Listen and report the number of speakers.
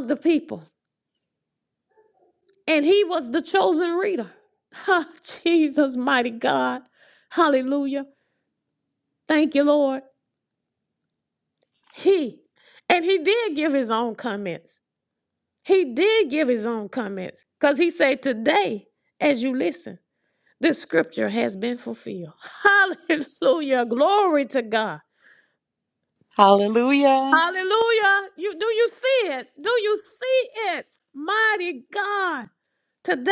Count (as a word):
two